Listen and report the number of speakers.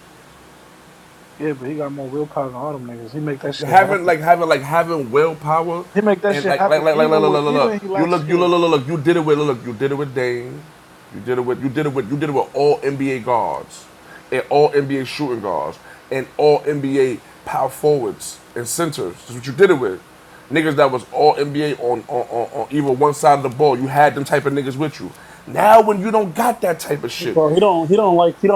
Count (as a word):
three